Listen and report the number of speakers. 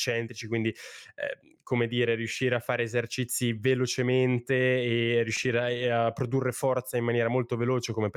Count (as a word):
one